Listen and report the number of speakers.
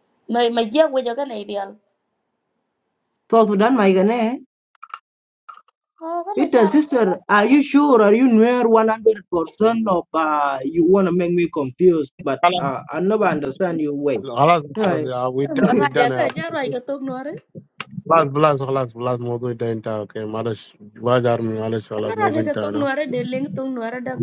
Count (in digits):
3